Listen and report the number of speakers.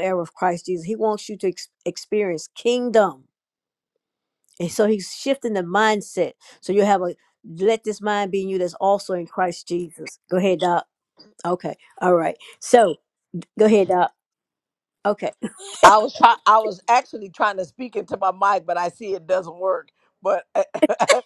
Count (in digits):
2